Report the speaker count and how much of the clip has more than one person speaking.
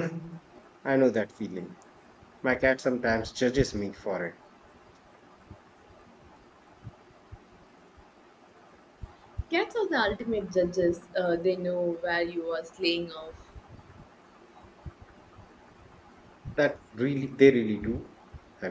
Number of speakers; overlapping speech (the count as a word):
two, no overlap